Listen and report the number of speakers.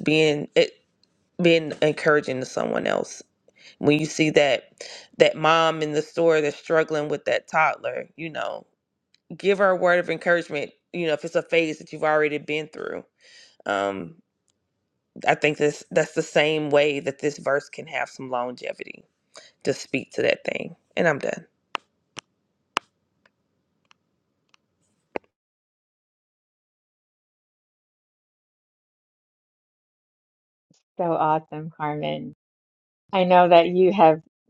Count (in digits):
2